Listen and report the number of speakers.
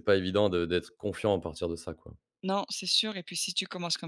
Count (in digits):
2